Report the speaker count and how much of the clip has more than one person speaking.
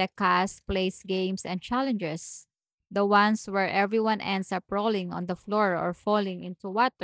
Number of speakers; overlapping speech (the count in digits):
1, no overlap